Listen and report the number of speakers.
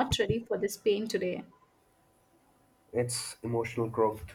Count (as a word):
two